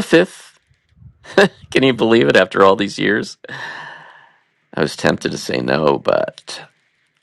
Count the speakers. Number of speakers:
1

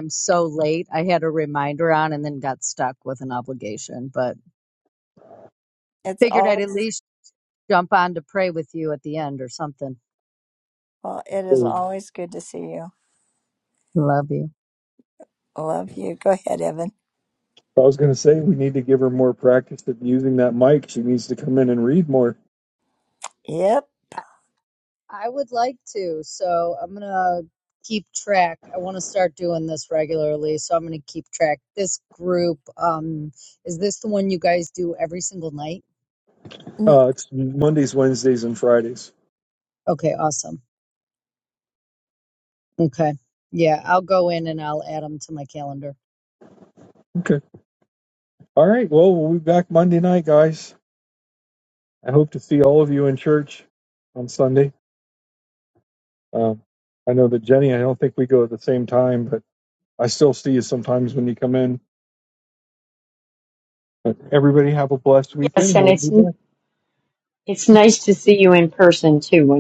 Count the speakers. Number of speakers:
4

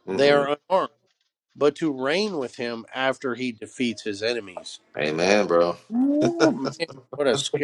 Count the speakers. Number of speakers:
2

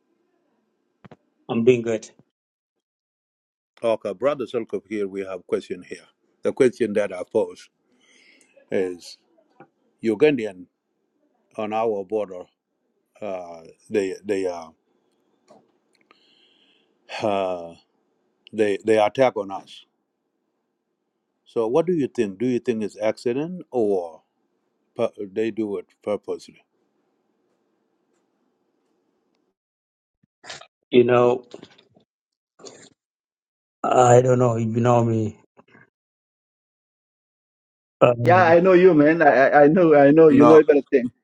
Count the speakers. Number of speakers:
3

